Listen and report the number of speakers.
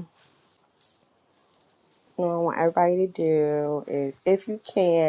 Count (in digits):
1